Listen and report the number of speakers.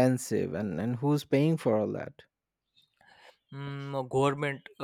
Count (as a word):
two